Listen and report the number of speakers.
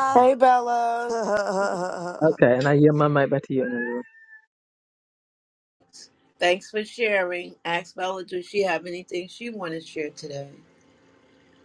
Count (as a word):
four